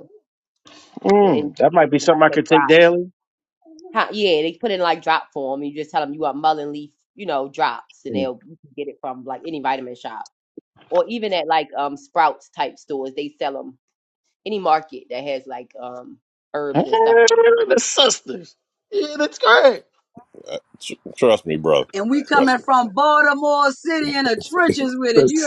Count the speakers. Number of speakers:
4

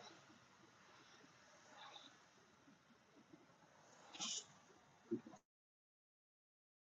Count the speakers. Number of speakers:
0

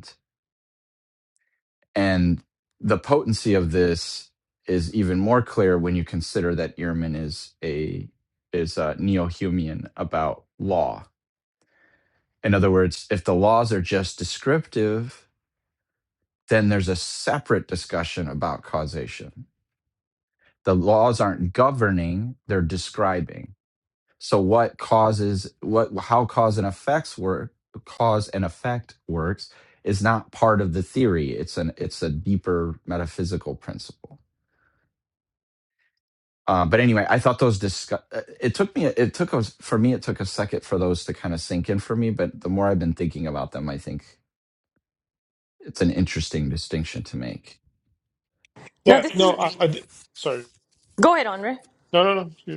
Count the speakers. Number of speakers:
3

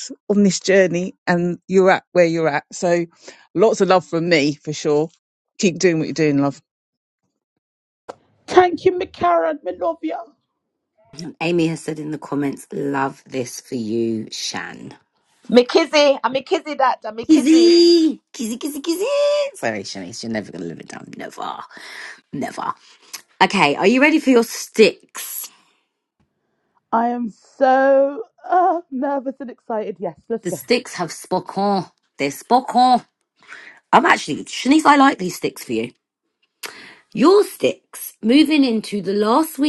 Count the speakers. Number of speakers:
4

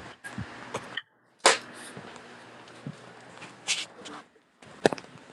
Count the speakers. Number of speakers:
0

